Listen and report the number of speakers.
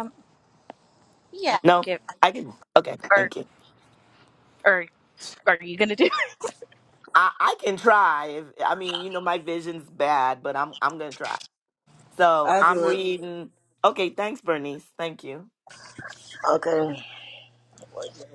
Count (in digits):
3